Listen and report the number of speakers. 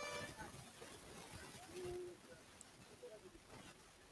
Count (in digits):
0